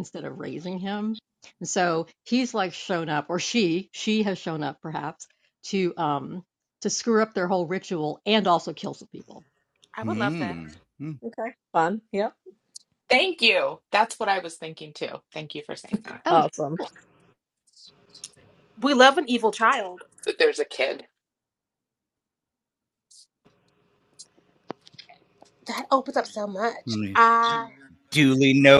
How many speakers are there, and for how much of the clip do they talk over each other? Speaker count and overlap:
five, about 3%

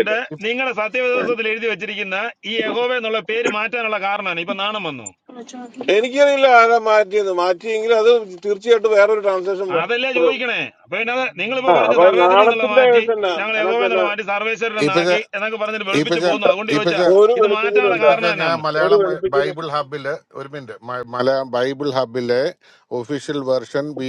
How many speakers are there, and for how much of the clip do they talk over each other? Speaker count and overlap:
three, about 27%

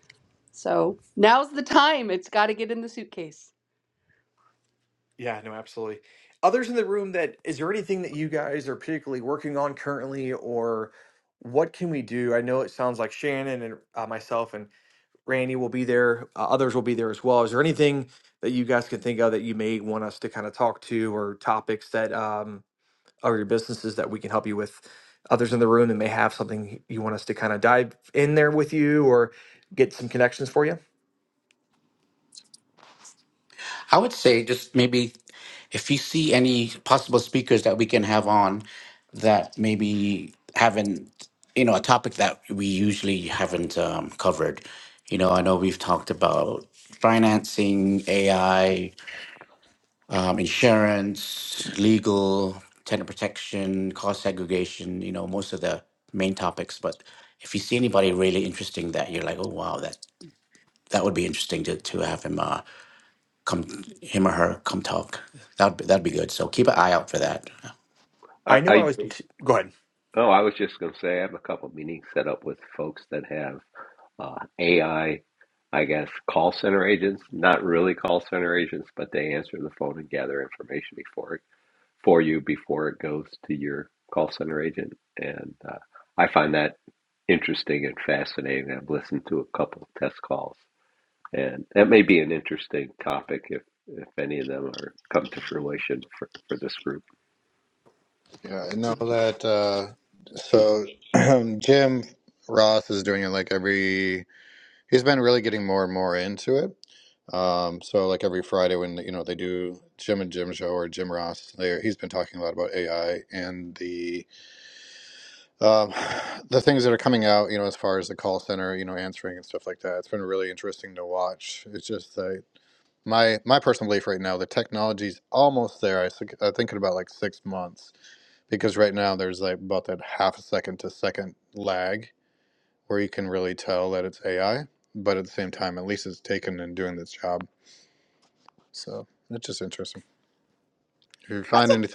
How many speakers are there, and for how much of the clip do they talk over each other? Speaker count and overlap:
five, under 1%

